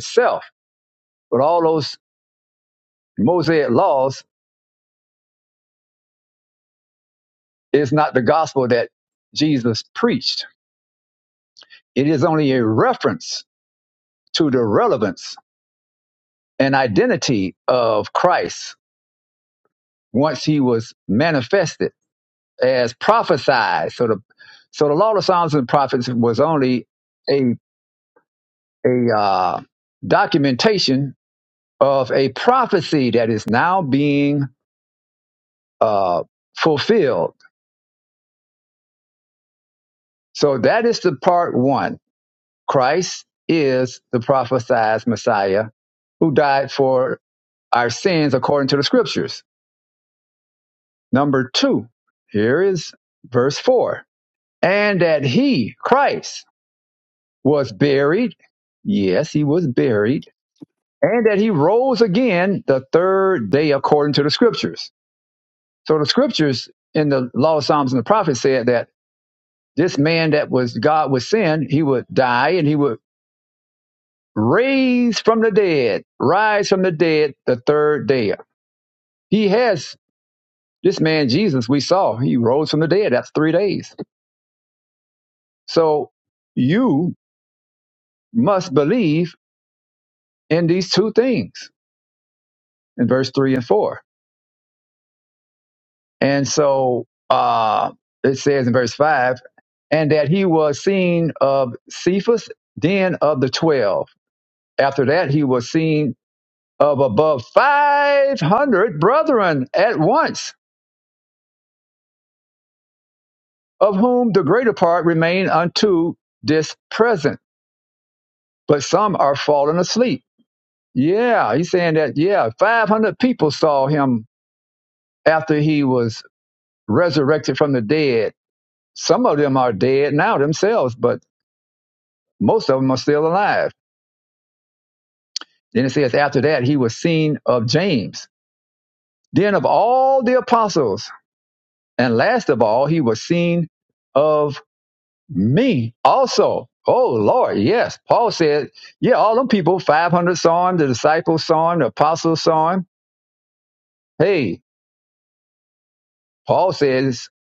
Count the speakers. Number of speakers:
1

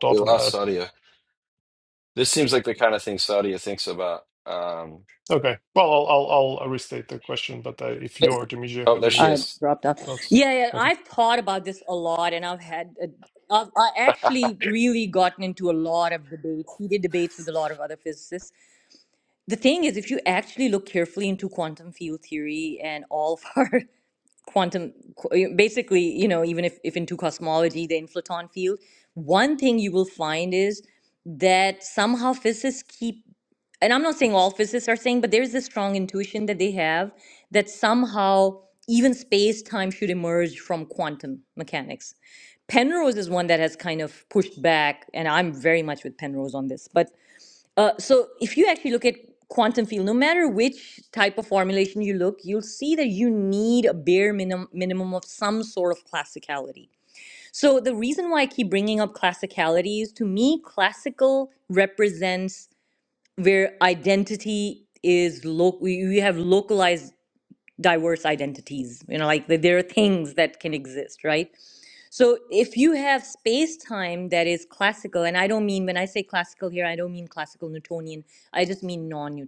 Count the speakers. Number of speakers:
3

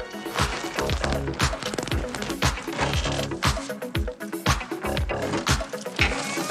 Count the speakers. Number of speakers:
0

